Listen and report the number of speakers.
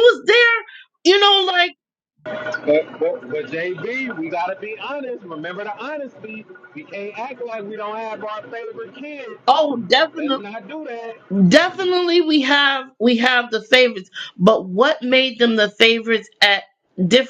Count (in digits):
2